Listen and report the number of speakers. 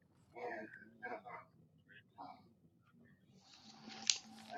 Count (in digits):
0